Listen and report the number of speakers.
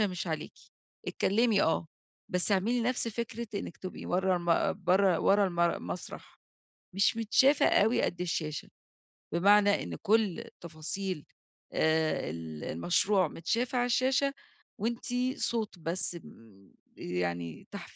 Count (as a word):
one